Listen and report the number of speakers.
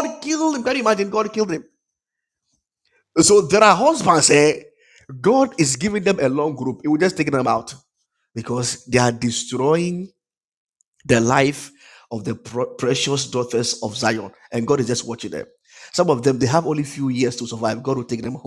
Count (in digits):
1